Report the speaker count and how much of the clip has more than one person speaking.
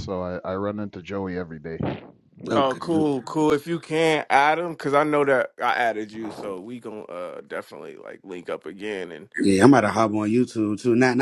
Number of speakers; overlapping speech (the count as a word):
three, about 3%